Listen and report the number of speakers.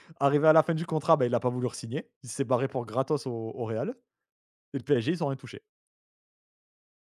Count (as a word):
one